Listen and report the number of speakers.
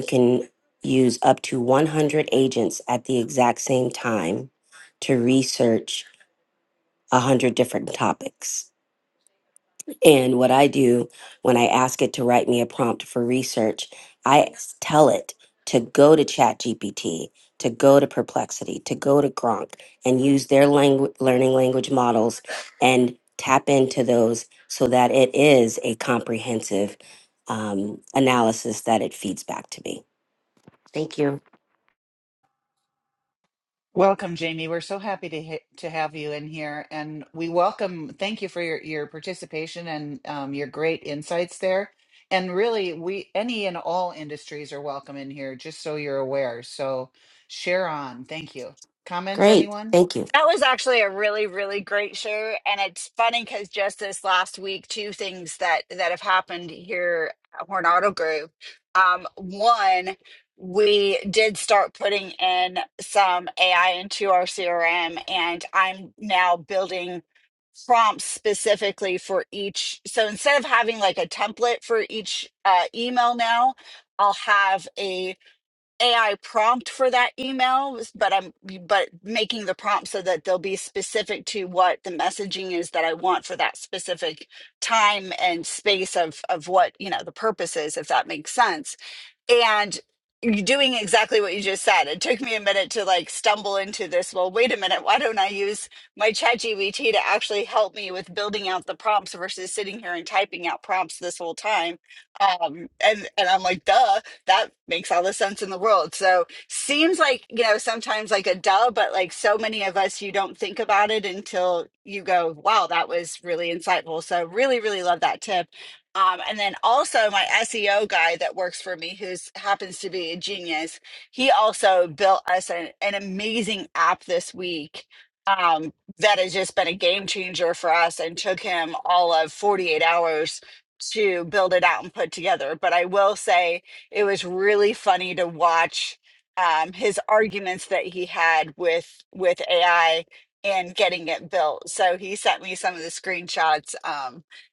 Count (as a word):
three